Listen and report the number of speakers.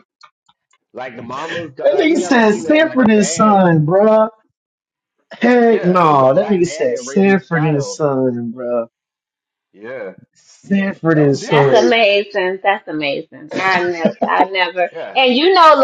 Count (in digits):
3